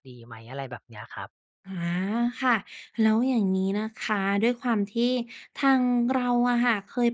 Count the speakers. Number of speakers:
2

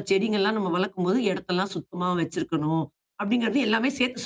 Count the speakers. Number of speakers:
1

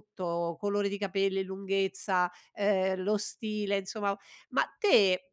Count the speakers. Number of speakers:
1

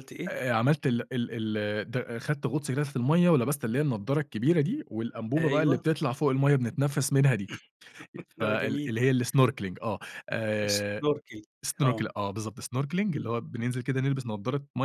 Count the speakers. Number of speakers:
2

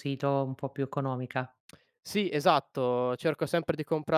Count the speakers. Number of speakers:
2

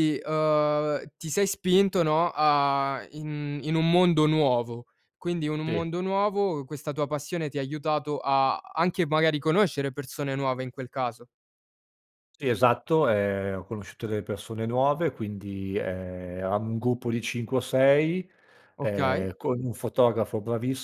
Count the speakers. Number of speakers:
2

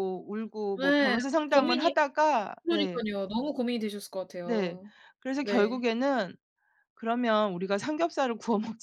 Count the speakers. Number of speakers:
2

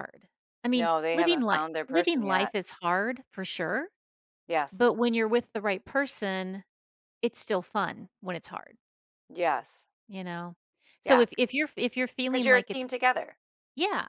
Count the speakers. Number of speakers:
2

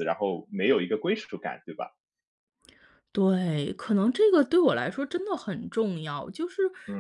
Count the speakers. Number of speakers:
2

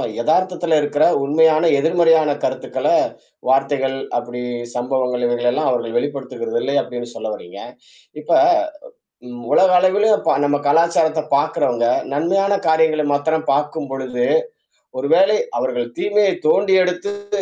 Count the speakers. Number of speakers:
1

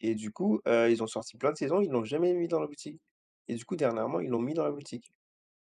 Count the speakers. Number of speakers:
1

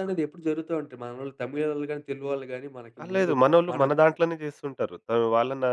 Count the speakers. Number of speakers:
2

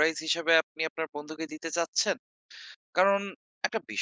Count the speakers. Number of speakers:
1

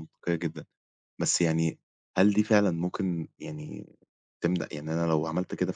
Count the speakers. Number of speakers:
1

